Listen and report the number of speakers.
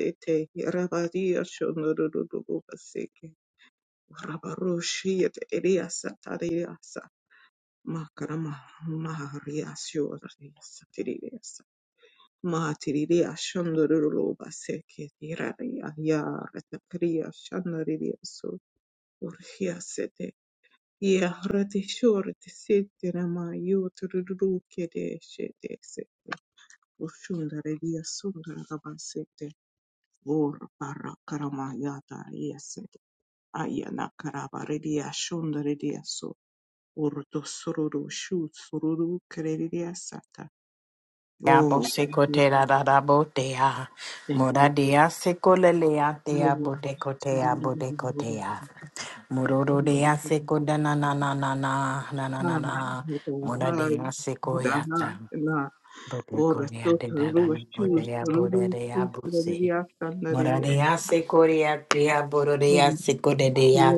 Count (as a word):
two